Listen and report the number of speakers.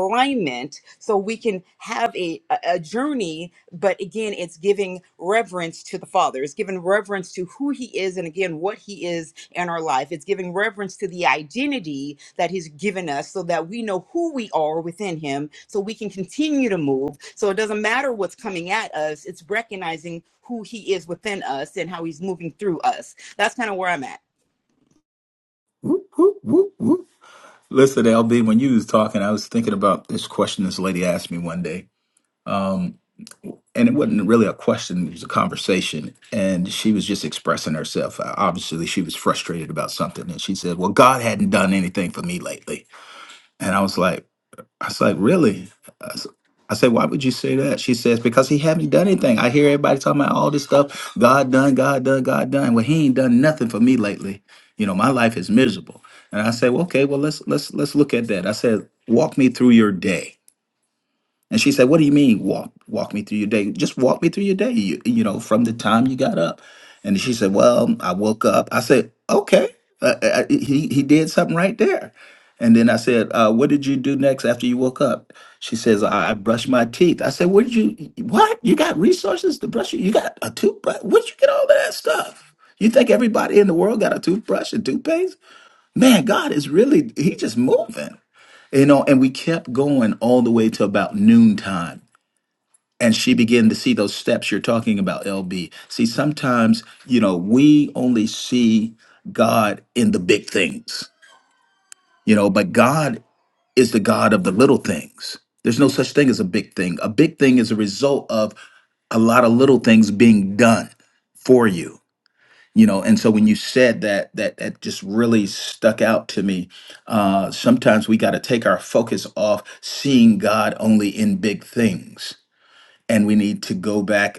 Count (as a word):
two